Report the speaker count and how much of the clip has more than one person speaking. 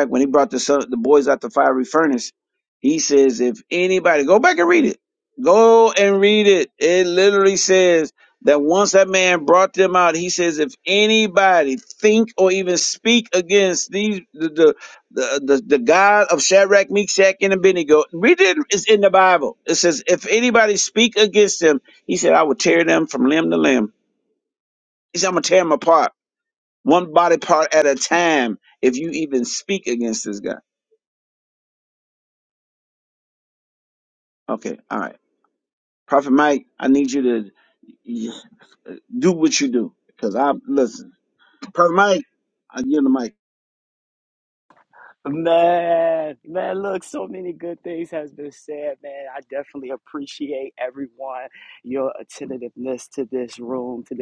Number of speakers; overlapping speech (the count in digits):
2, no overlap